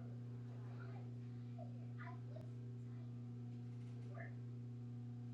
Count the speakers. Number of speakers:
0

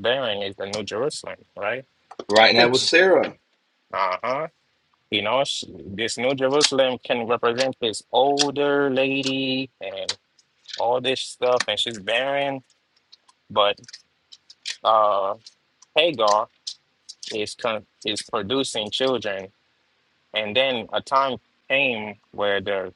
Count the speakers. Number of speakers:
2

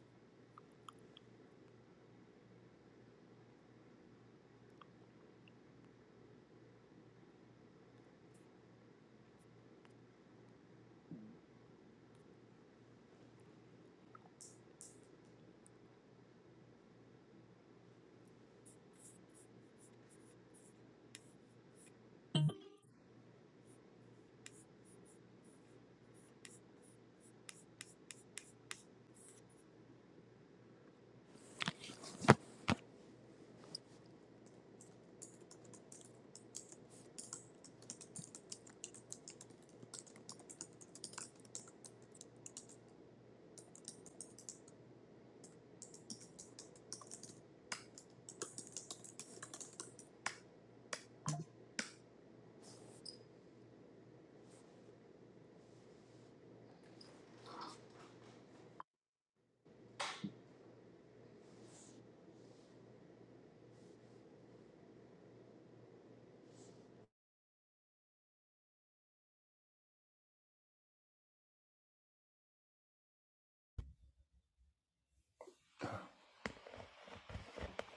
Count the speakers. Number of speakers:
0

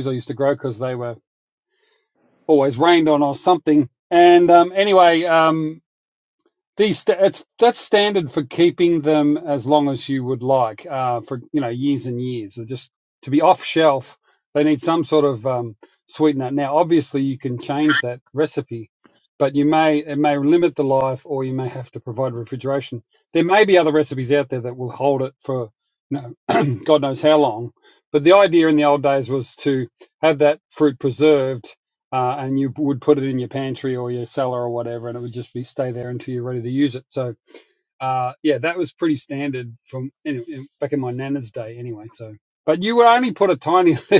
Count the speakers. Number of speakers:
1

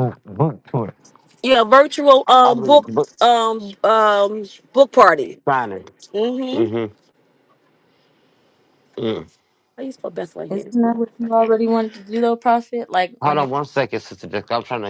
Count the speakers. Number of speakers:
3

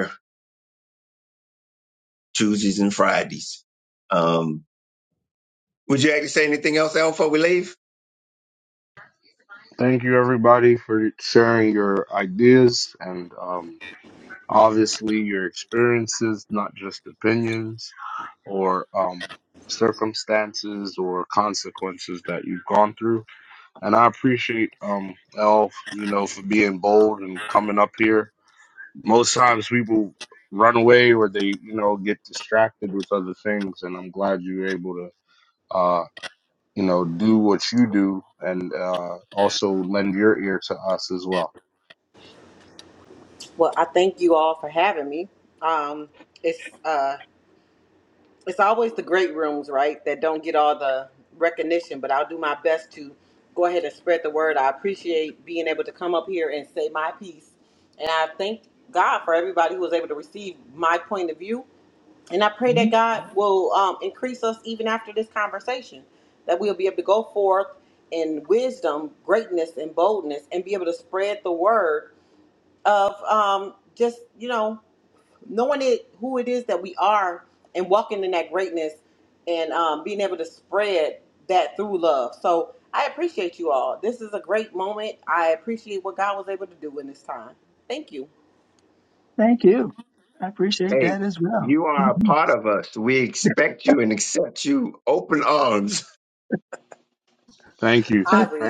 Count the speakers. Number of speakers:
4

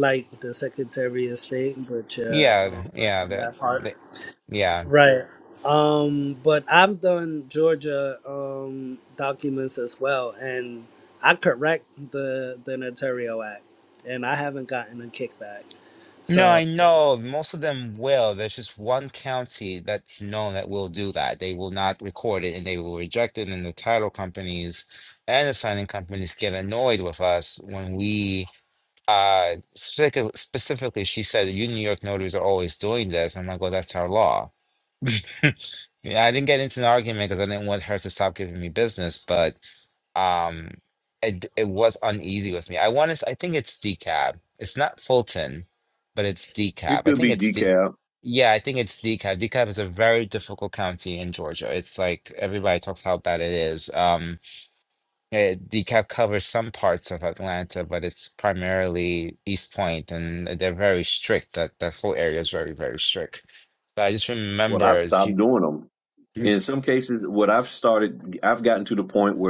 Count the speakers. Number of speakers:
3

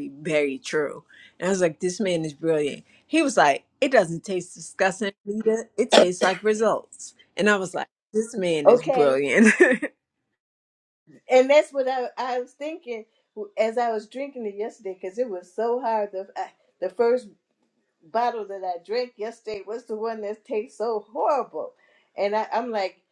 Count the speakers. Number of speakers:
2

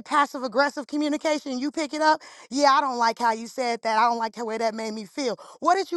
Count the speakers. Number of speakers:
1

